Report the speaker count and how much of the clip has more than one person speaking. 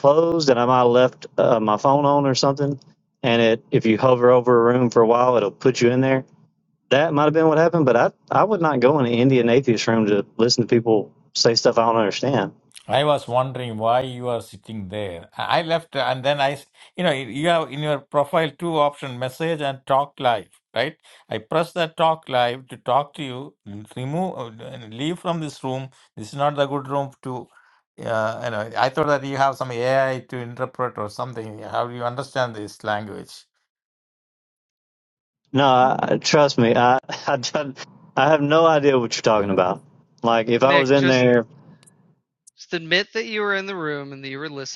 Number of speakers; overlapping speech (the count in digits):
3, about 2%